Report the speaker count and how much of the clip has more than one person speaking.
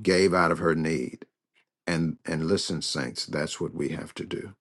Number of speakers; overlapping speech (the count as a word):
one, no overlap